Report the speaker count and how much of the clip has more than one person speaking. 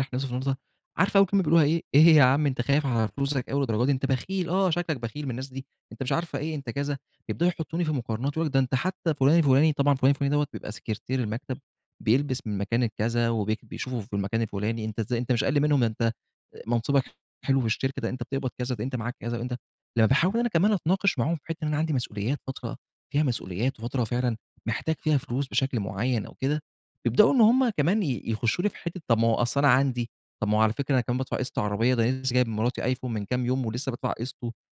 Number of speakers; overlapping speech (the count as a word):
one, no overlap